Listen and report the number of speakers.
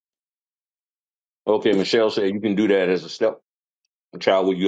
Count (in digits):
1